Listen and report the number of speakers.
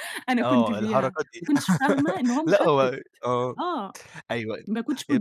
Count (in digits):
2